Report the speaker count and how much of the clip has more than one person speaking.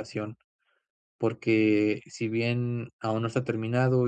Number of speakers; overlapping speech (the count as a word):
one, no overlap